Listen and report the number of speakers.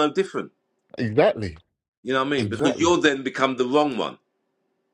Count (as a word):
two